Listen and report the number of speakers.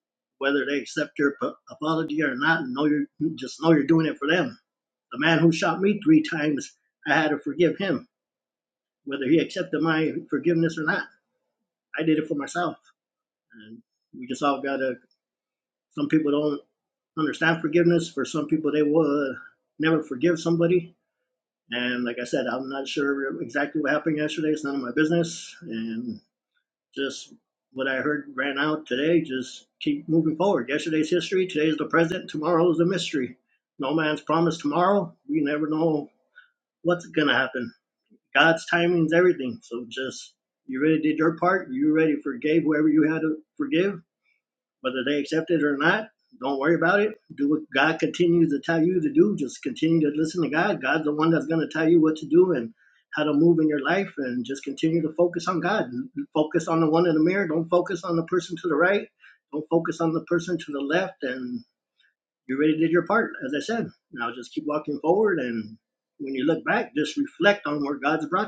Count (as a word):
one